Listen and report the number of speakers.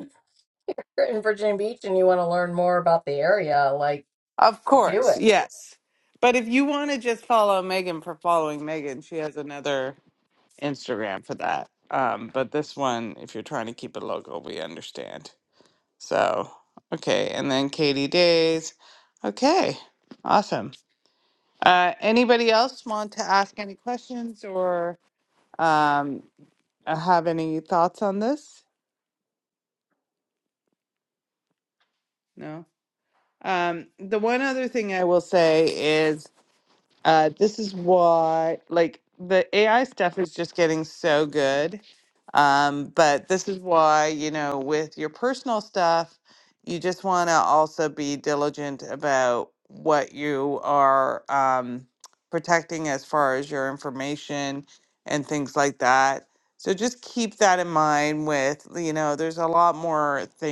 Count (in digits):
2